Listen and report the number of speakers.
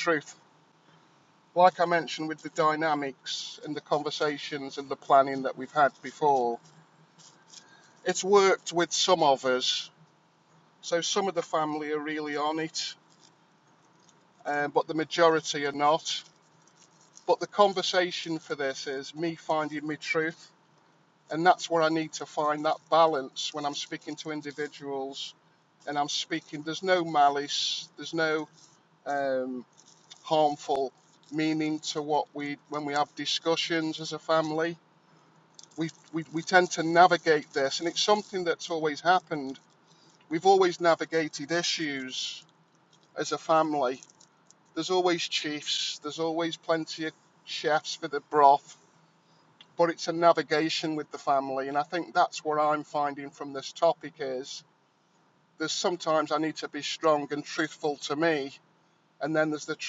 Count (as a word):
one